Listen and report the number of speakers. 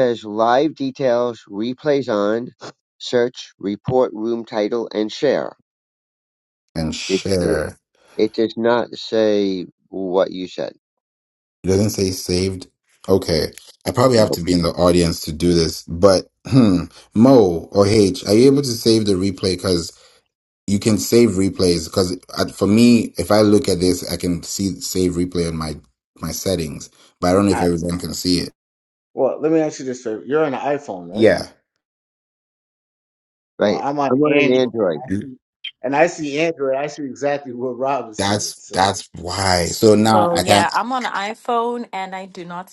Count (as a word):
four